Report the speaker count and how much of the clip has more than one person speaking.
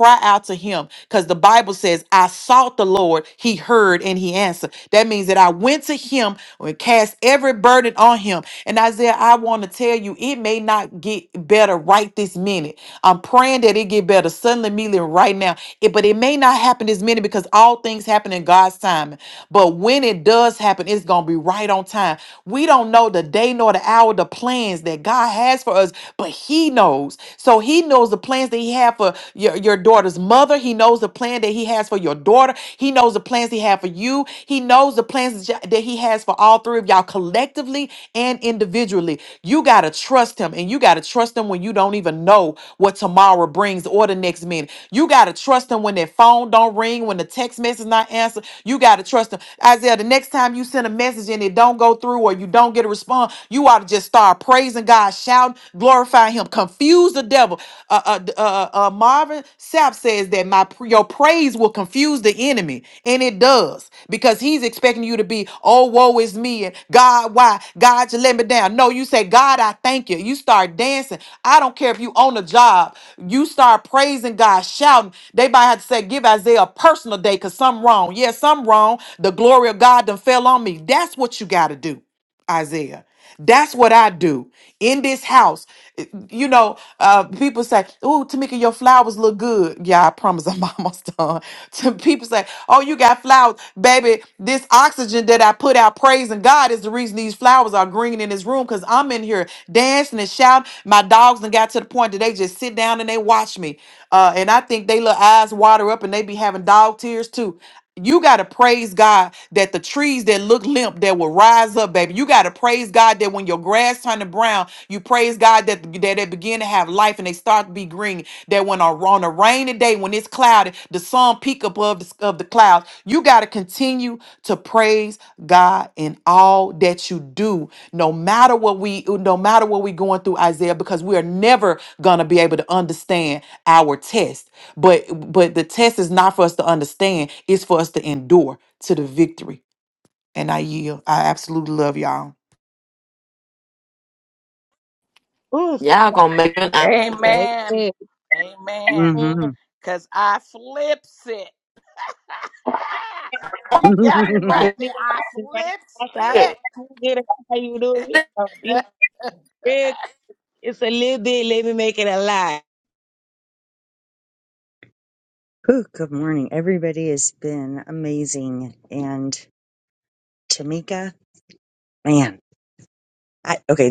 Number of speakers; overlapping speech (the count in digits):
5, about 1%